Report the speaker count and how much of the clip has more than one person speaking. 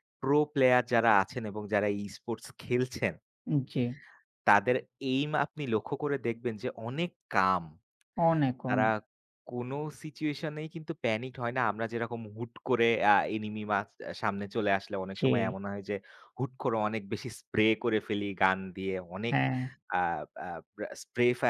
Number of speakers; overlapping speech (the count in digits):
2, about 3%